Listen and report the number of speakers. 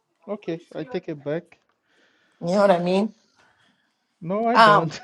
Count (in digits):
2